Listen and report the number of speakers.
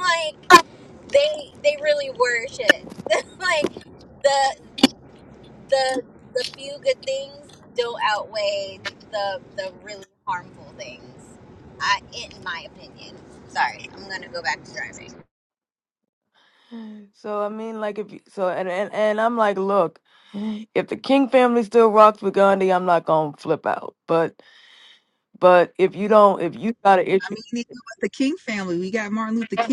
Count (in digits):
3